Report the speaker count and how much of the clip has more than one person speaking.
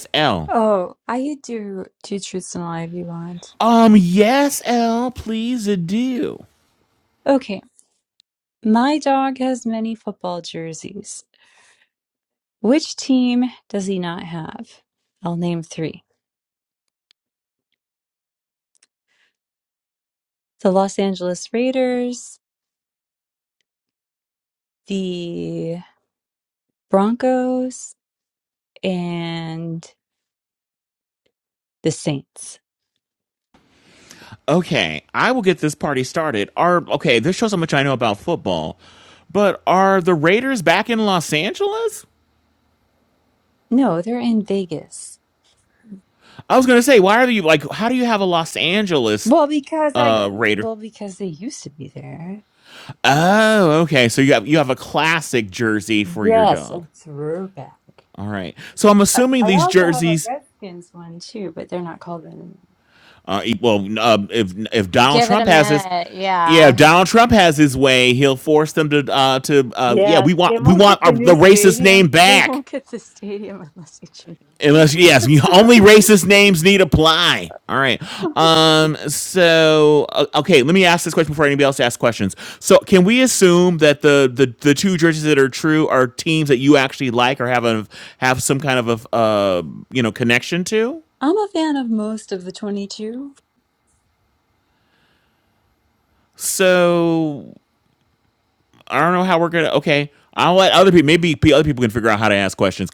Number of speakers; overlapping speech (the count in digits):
3, about 5%